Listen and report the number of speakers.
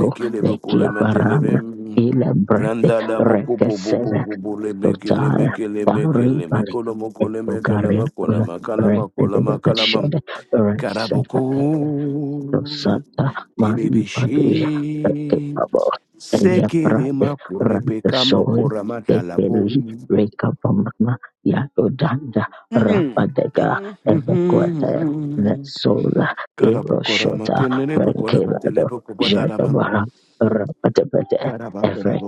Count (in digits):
2